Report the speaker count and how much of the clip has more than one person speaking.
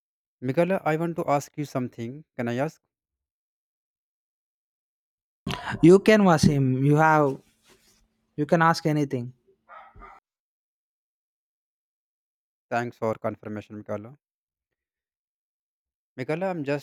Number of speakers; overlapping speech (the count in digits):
2, no overlap